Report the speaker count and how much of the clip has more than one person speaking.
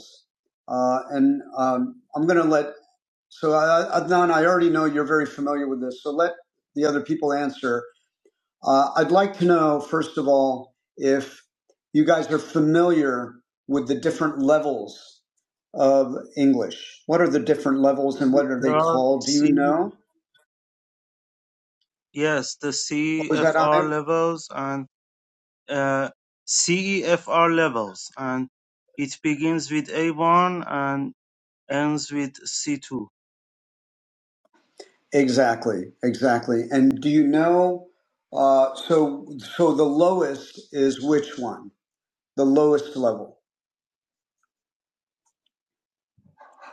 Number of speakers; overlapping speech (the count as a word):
two, about 4%